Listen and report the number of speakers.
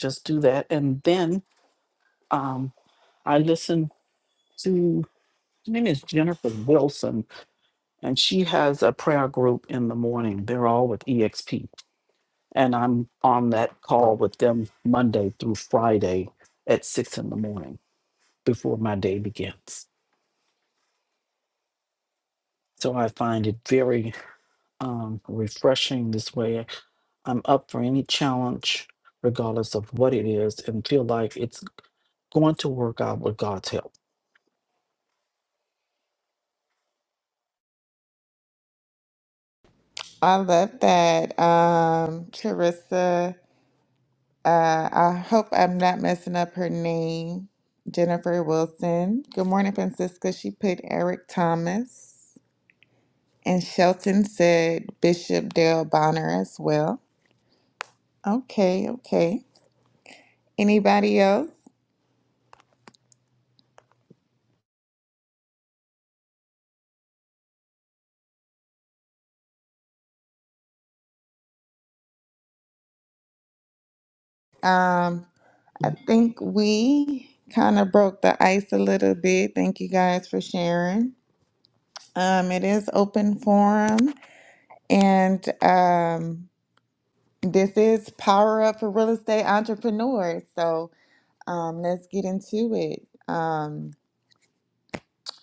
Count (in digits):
2